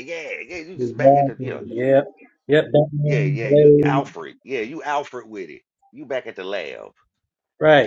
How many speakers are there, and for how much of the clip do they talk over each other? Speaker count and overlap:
2, about 26%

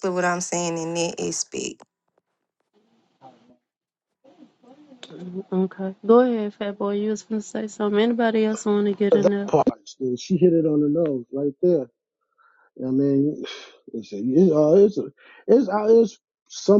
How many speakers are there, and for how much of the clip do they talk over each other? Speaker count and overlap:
3, about 2%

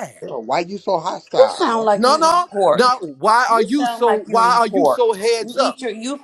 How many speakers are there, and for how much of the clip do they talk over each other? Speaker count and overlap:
3, about 51%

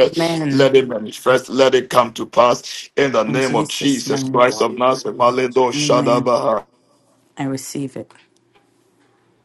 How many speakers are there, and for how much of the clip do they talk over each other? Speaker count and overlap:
2, about 26%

